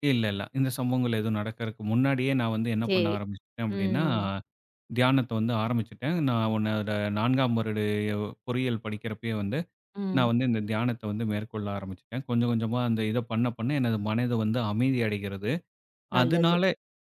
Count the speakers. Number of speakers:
2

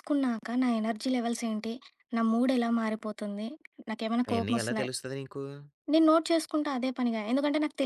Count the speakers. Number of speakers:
2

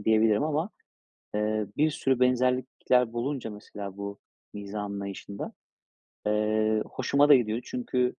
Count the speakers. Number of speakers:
1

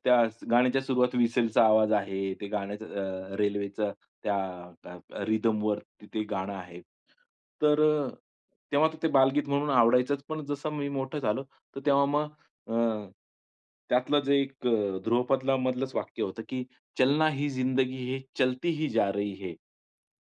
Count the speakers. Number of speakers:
1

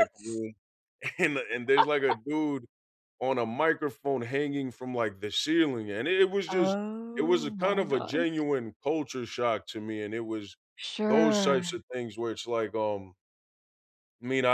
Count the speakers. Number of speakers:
2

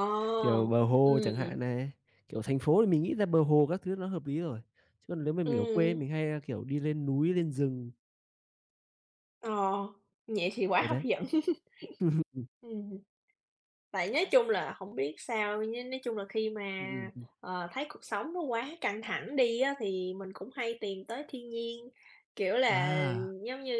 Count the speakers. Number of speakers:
2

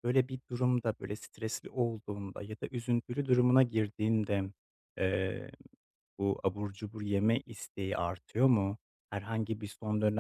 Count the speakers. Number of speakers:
1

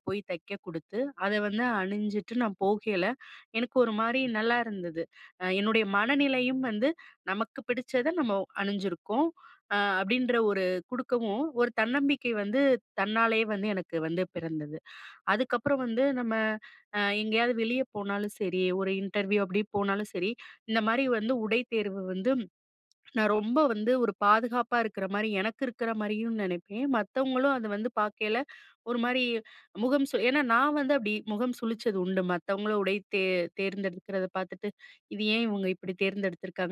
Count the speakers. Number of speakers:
1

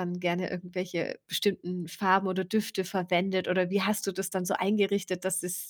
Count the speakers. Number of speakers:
1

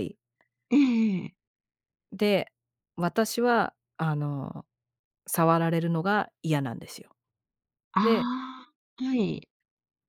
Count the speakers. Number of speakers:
2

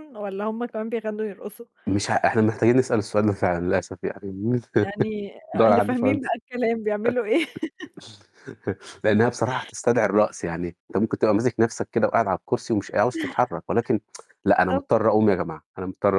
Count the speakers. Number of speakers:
2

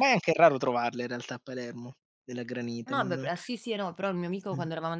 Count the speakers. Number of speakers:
2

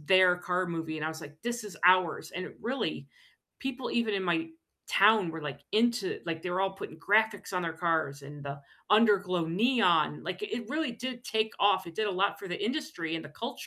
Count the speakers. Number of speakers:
1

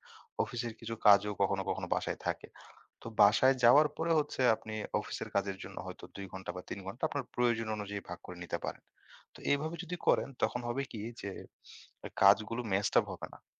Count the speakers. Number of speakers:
1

